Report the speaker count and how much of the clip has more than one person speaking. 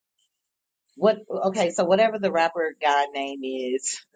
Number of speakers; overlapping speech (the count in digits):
1, no overlap